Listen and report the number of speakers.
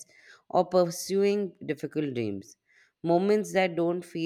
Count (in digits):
1